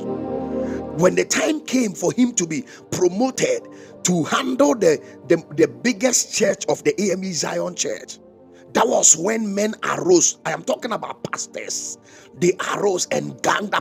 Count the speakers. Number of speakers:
1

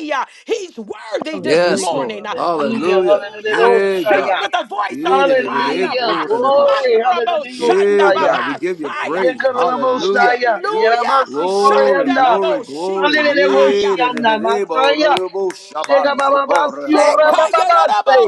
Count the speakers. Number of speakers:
3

